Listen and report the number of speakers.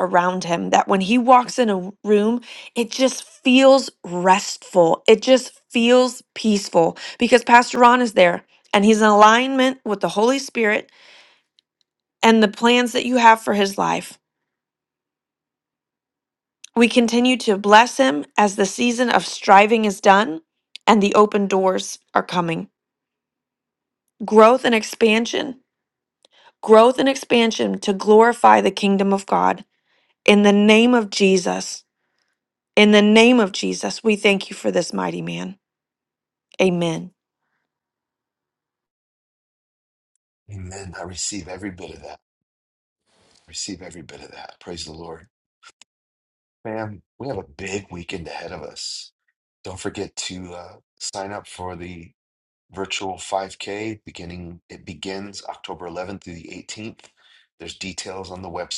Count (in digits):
2